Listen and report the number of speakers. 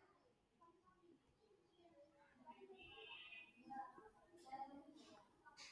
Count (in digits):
0